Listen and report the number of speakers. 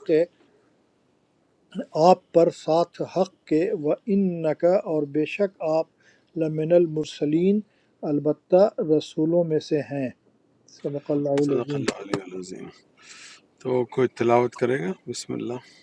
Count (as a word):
two